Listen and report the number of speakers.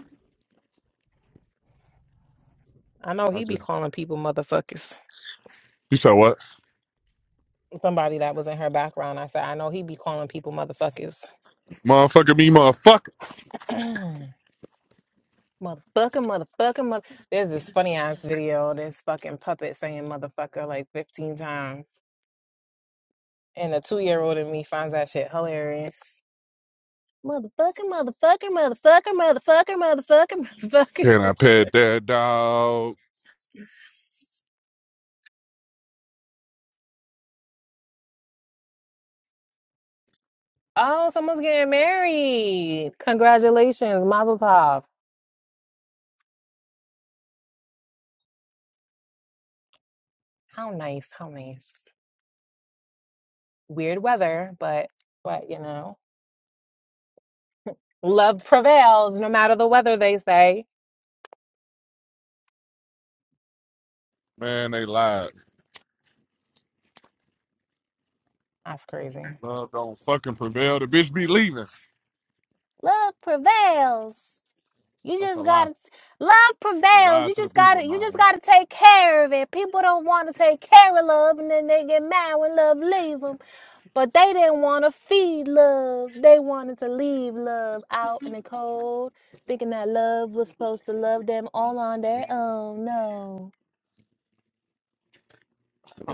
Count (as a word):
two